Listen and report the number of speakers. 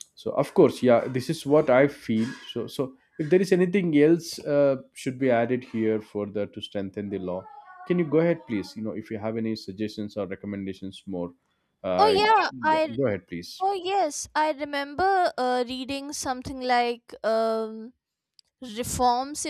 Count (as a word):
two